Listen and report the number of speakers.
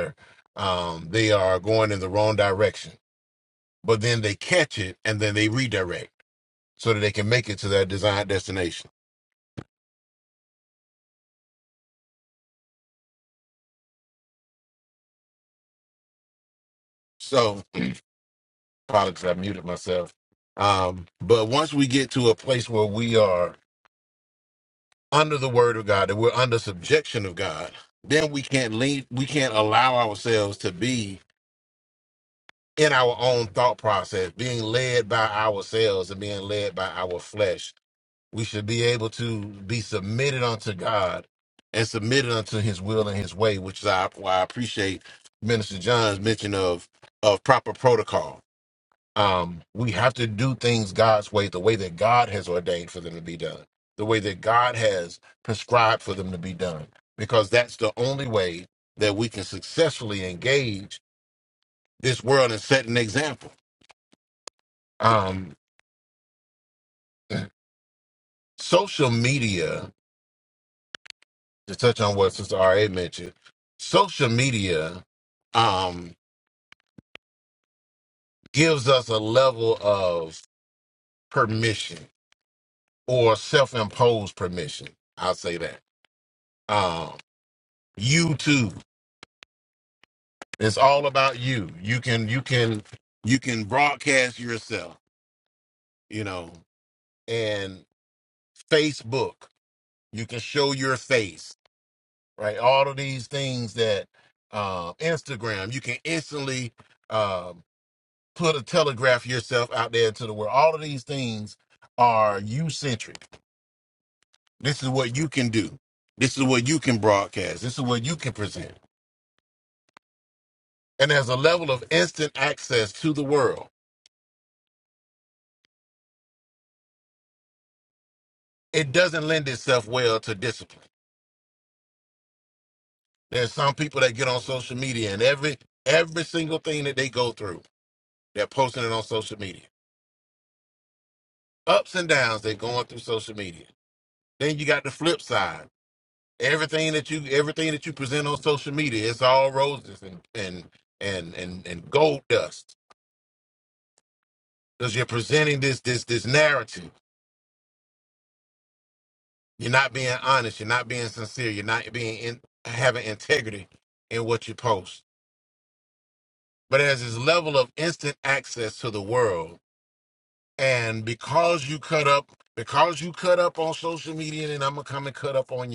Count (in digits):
1